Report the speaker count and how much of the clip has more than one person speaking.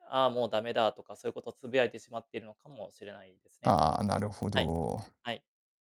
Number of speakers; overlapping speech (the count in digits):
2, about 3%